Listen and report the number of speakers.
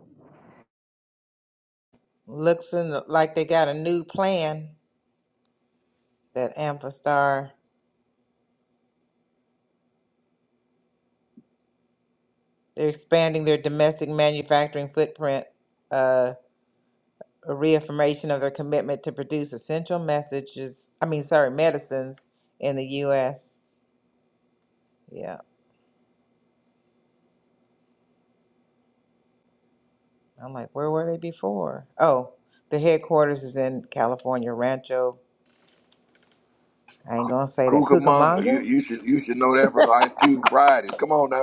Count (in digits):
2